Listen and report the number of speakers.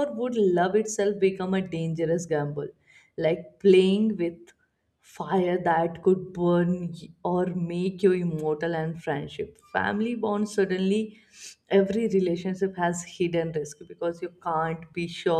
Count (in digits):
1